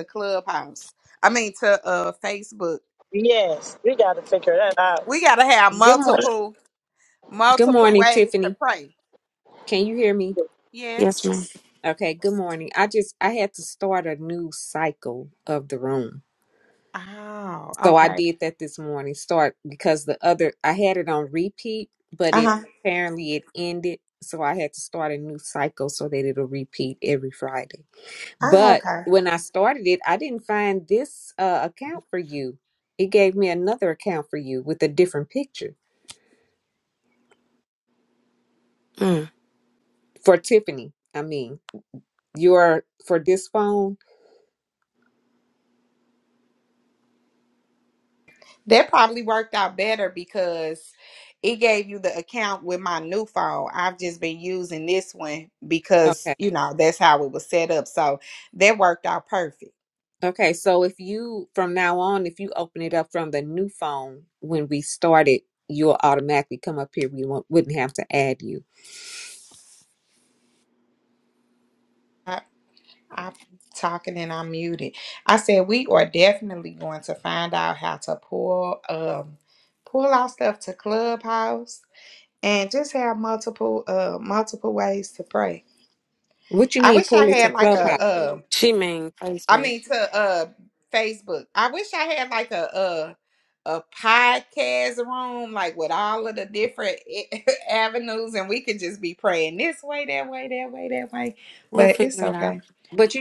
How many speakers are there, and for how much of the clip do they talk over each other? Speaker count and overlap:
4, about 5%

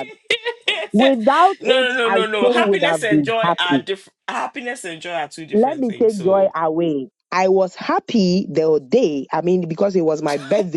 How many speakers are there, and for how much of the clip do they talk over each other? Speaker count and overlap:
2, about 30%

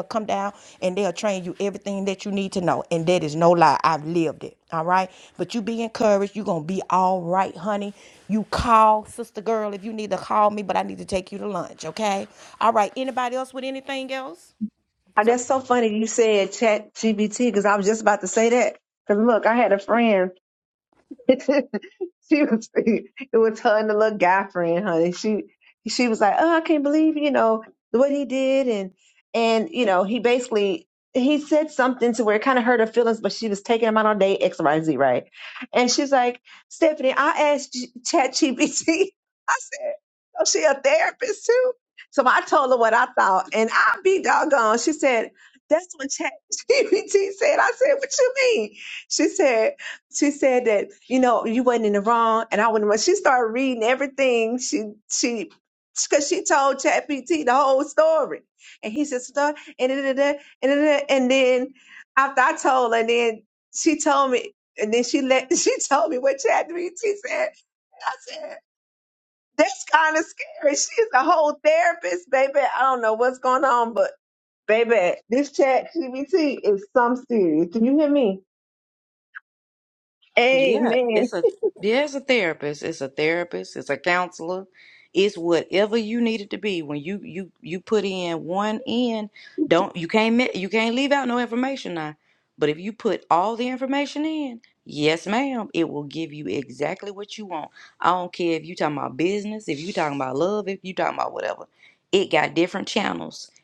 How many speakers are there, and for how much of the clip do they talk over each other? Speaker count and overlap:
3, about 1%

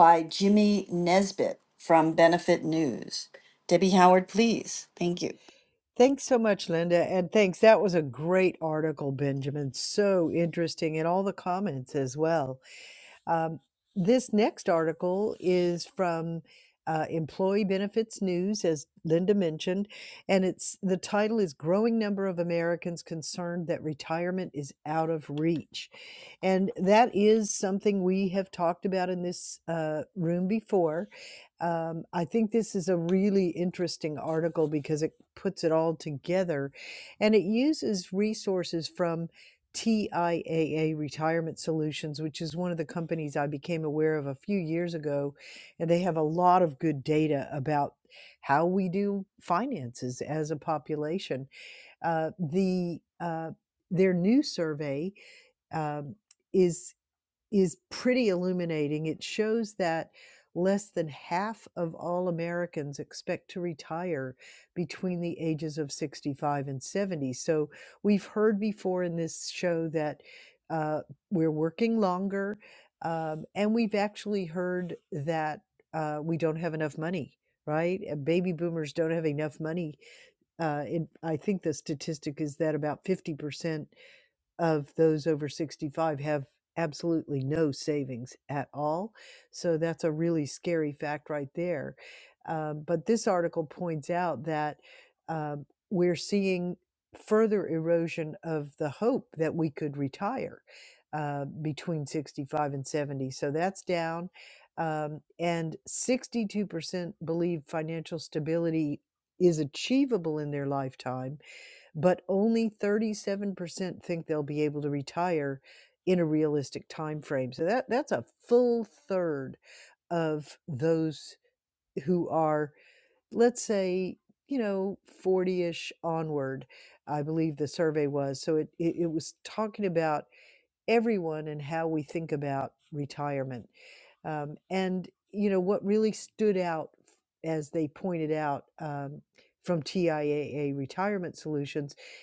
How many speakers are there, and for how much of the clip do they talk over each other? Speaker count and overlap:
2, no overlap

